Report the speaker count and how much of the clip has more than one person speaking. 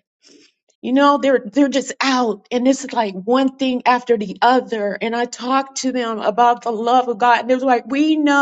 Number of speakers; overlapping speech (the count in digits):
1, no overlap